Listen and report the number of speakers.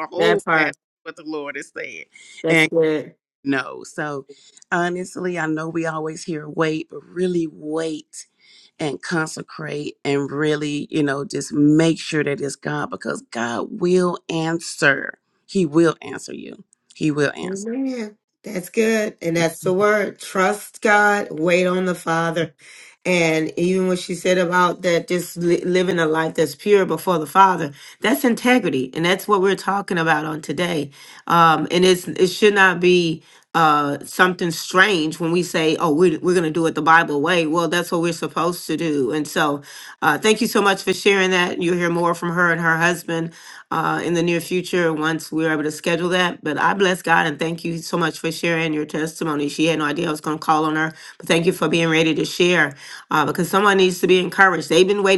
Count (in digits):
2